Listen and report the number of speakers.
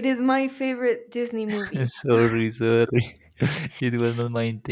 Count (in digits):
2